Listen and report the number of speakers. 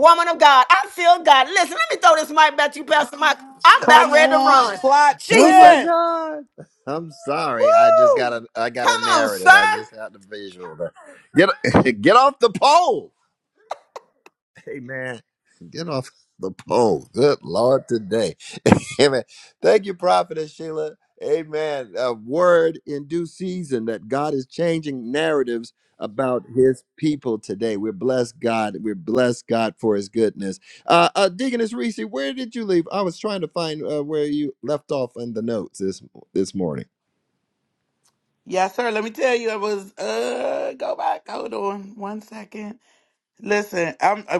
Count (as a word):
three